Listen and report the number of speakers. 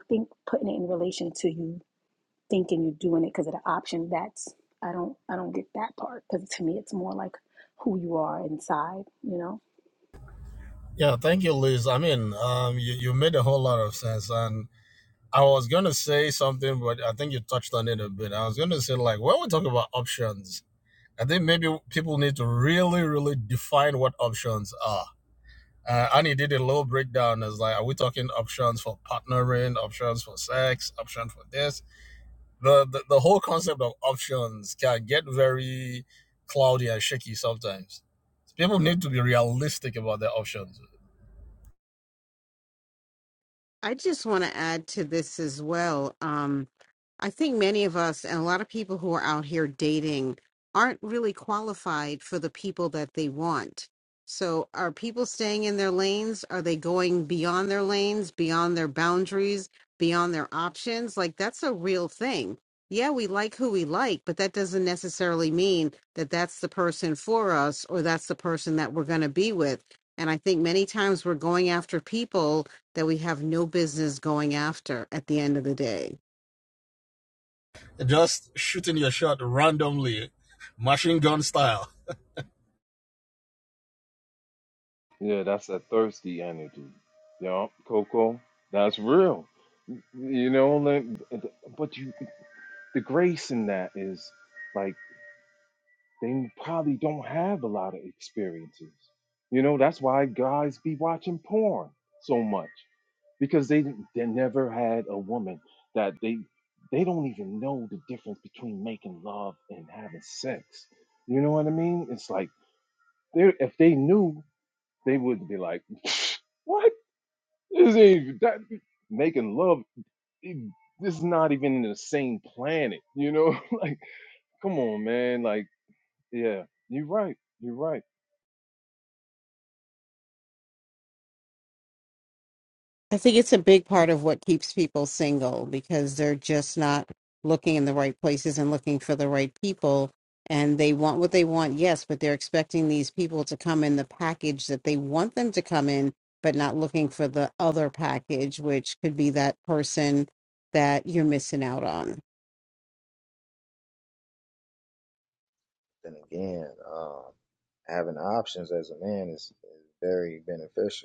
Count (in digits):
5